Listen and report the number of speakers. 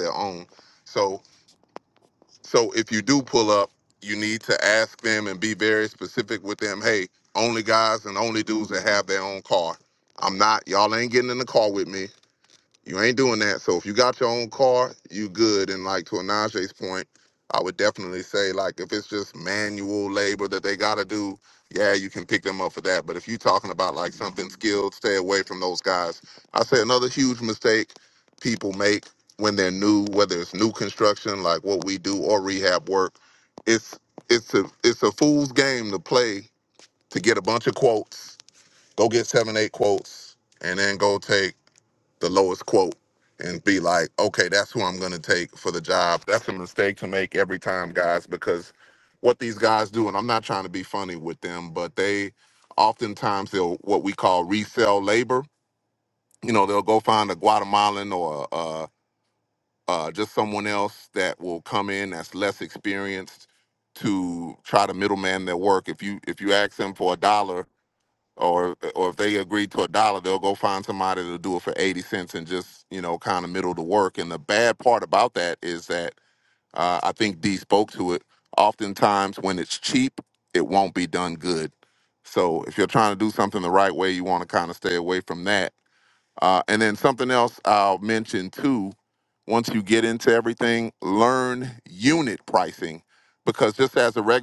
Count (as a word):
one